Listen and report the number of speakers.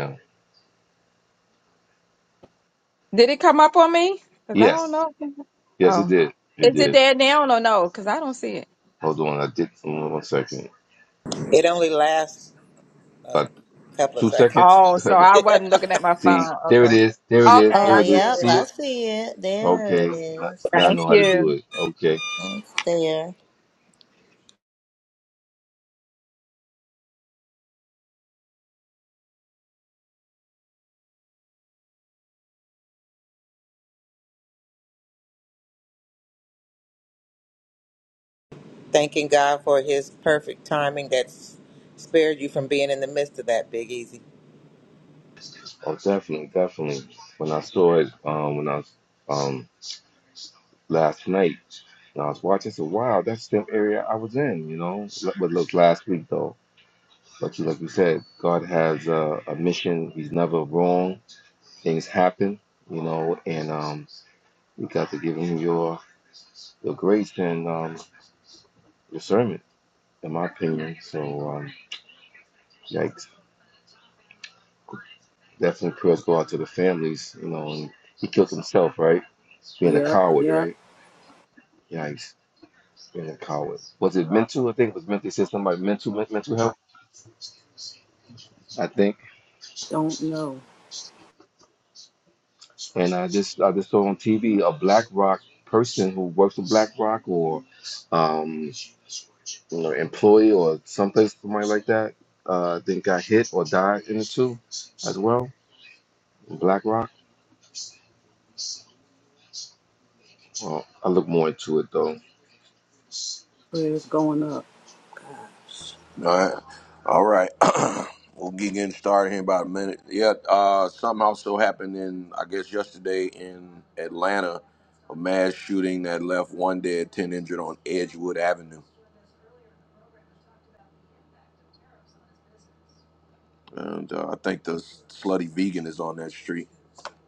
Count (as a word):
six